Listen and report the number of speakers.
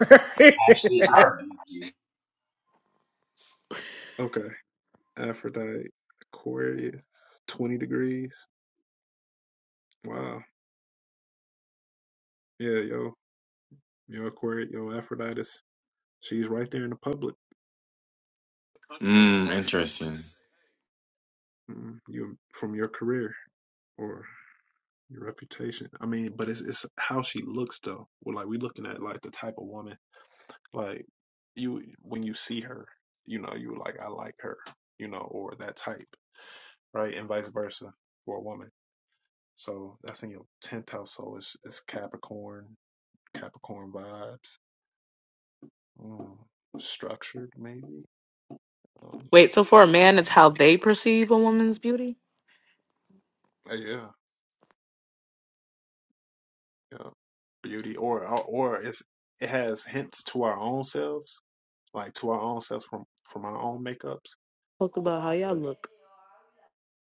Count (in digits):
4